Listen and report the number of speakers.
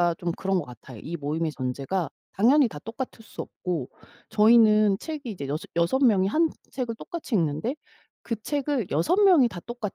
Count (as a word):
one